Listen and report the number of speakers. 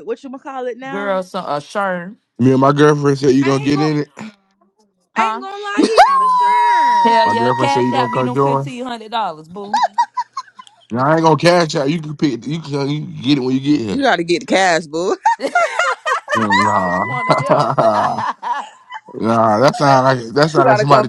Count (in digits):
4